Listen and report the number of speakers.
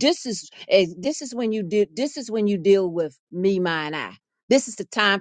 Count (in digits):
1